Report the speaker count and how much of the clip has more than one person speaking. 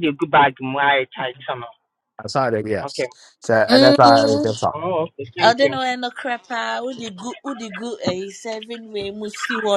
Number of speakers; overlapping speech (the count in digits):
3, about 13%